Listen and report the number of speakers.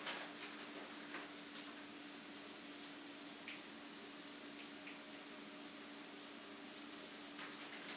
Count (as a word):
zero